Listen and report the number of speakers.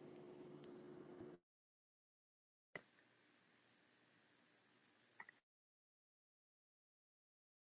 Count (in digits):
0